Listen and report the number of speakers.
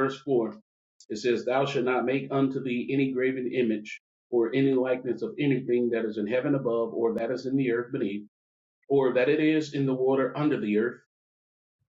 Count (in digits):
1